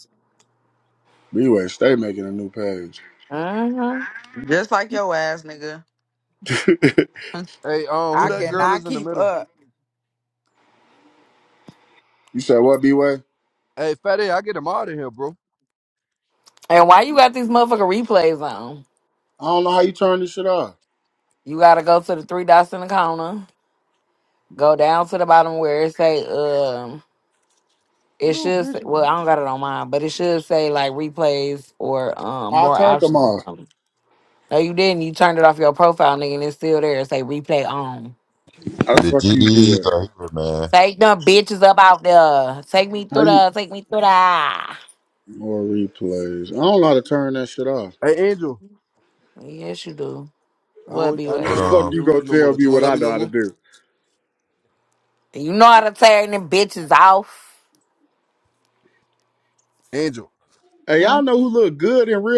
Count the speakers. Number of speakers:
5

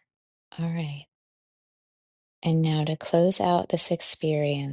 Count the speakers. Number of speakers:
1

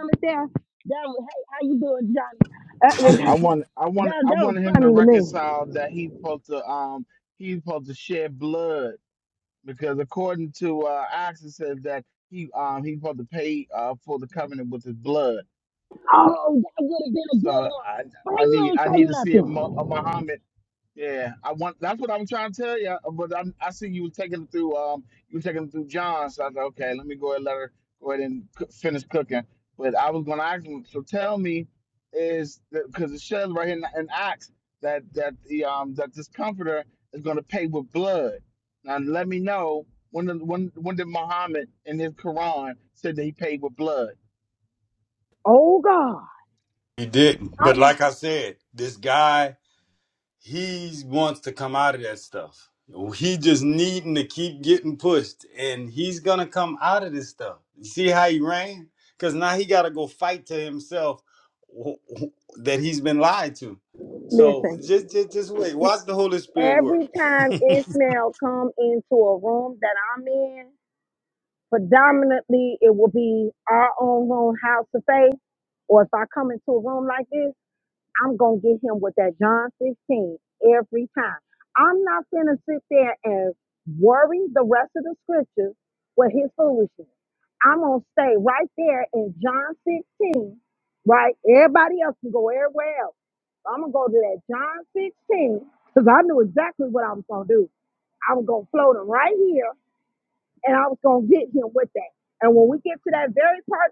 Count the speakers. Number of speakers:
3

